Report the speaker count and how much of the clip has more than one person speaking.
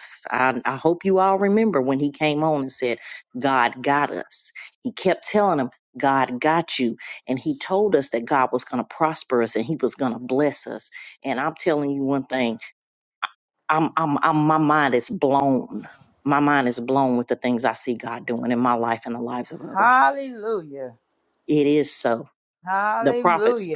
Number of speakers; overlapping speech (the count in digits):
2, about 4%